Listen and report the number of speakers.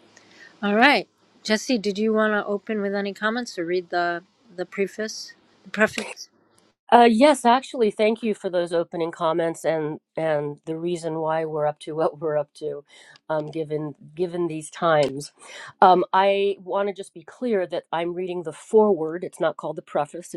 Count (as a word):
two